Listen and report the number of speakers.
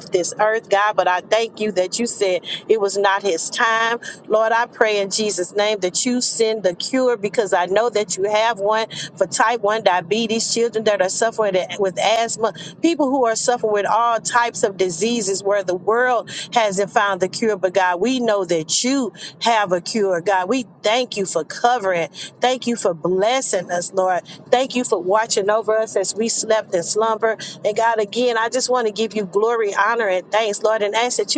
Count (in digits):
1